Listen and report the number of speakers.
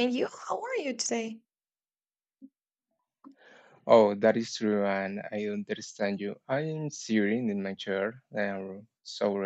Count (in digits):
2